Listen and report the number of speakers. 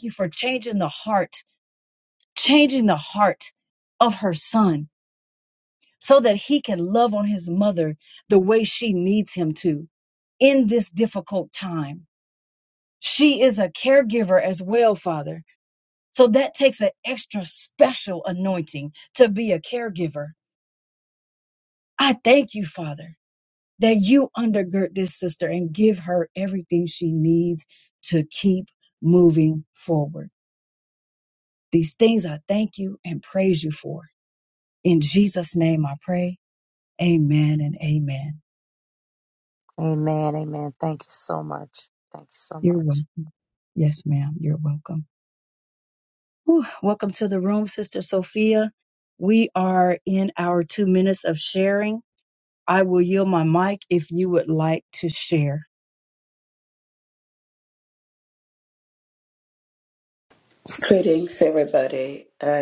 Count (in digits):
3